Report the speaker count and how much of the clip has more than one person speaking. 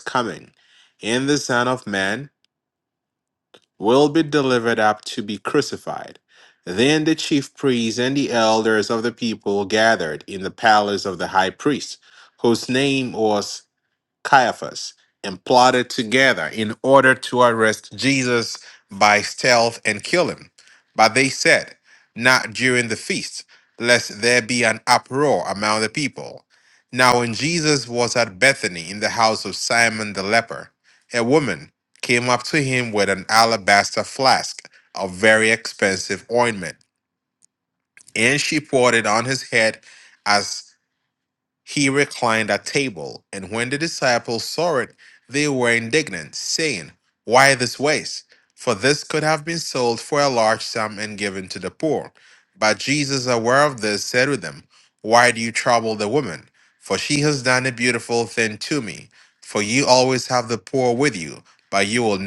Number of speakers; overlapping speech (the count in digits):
1, no overlap